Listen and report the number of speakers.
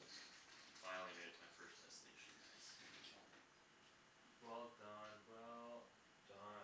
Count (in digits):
2